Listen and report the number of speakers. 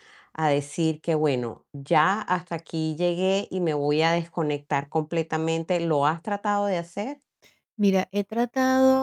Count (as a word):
two